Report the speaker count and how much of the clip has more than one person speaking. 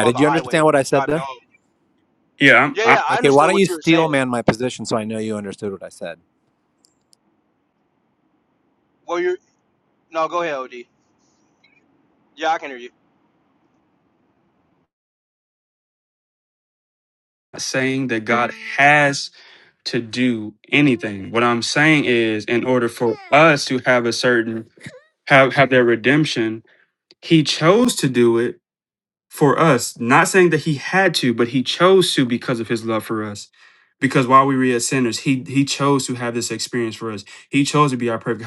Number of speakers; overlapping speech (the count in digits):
3, about 6%